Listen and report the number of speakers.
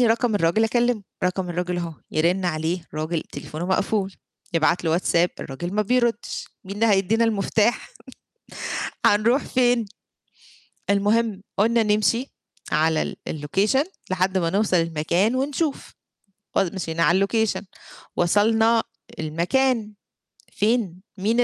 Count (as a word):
one